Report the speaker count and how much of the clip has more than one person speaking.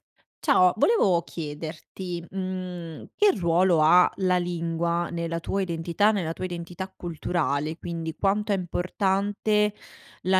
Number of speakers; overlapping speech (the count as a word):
one, no overlap